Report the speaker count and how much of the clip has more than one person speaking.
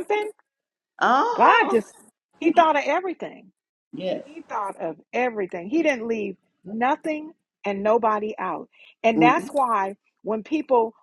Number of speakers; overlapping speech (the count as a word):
two, about 8%